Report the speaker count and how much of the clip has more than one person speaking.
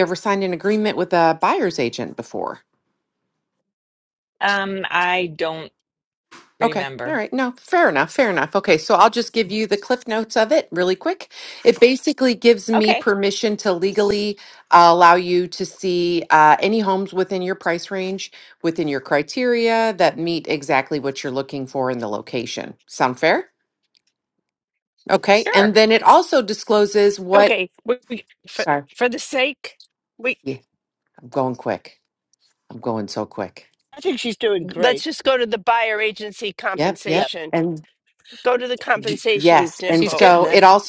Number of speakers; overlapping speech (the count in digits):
4, about 9%